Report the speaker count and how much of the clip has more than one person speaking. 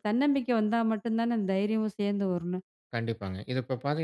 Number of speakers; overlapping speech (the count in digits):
2, no overlap